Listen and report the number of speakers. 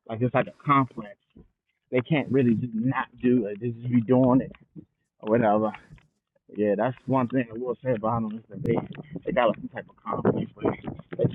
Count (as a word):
one